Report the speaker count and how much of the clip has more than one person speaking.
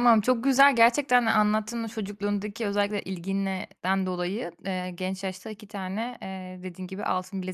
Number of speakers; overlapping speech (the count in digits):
1, no overlap